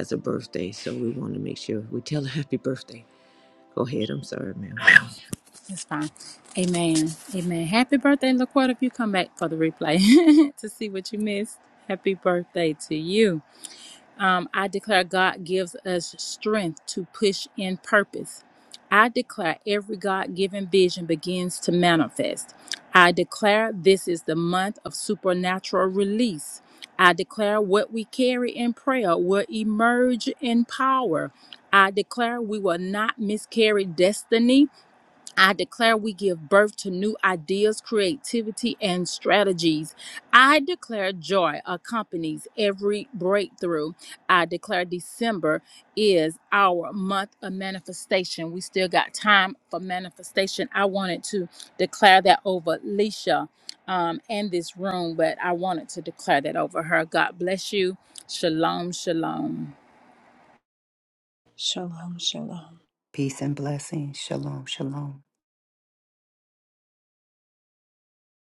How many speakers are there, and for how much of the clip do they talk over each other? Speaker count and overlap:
4, no overlap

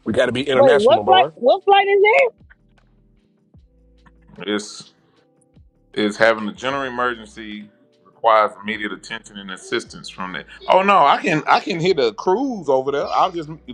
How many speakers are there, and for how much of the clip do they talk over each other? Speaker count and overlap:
3, about 5%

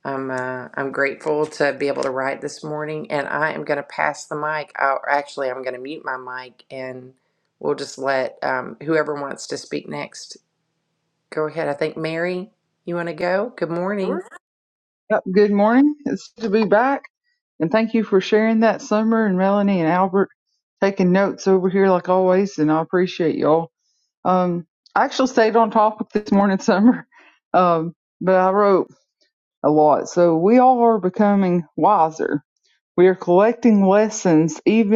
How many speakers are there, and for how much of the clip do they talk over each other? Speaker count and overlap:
2, about 1%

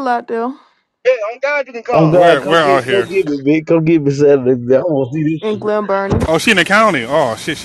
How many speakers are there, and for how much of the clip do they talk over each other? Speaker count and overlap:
4, about 20%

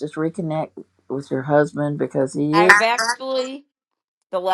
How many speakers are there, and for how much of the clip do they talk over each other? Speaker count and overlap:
2, about 6%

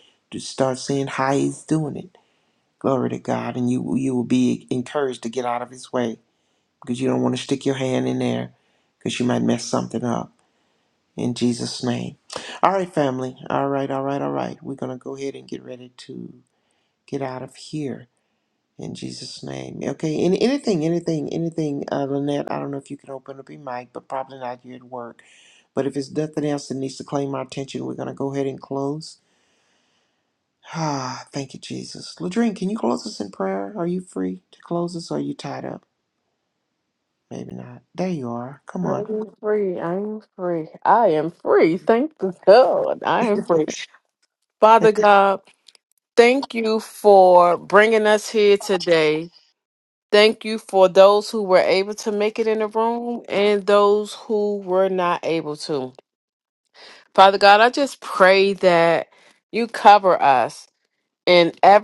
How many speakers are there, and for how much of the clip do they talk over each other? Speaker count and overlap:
2, under 1%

